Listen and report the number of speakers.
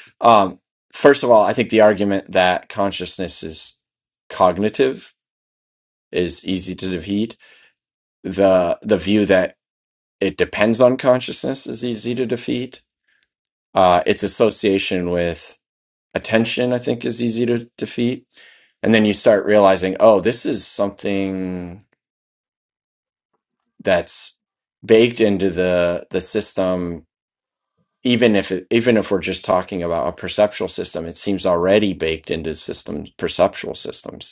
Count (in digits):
1